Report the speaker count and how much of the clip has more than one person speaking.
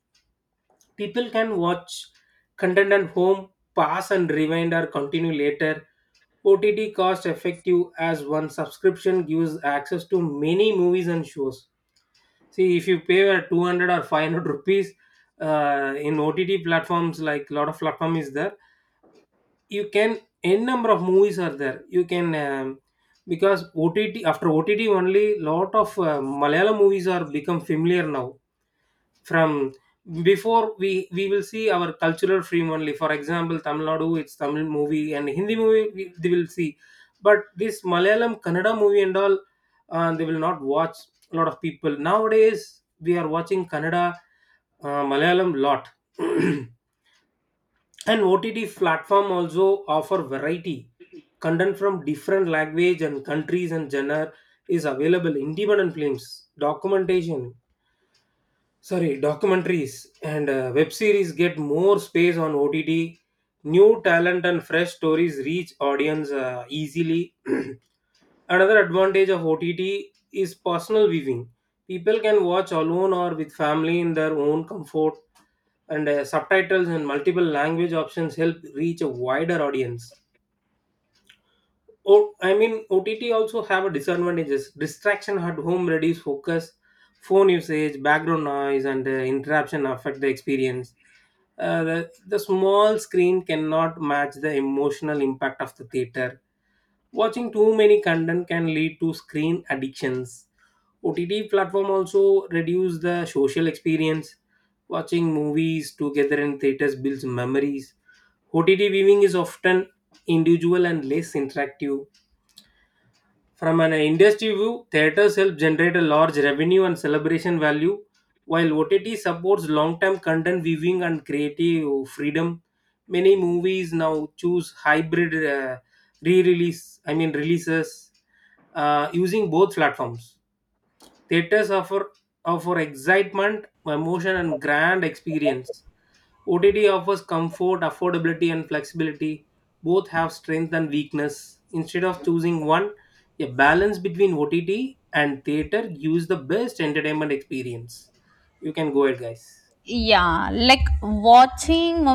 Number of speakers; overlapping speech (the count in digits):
2, no overlap